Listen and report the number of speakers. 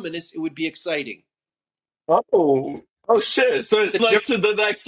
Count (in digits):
2